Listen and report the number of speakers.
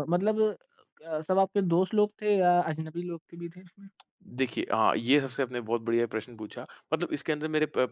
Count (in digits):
2